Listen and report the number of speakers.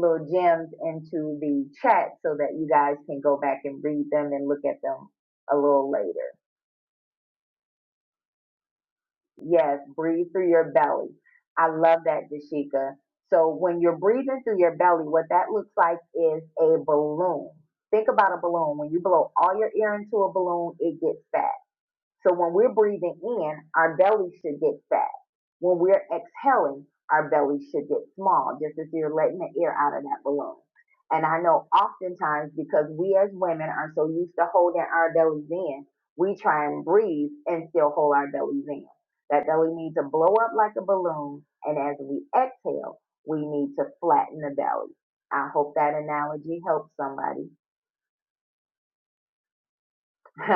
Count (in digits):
1